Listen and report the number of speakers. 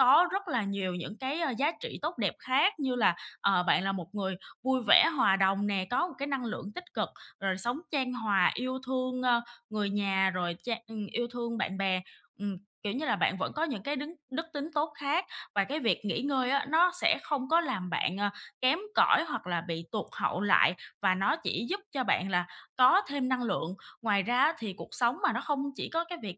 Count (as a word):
one